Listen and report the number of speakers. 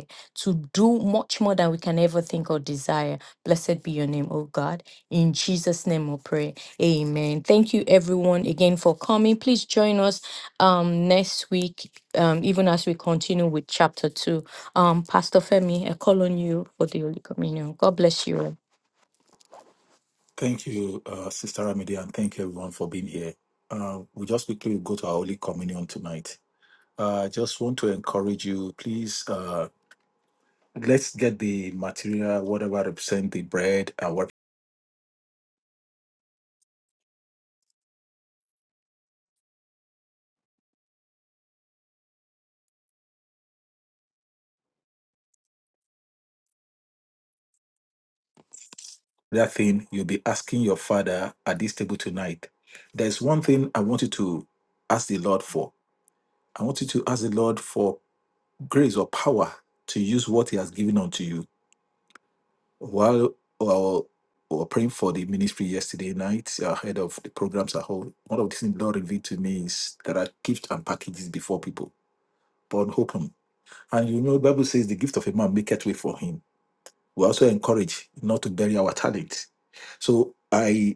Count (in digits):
2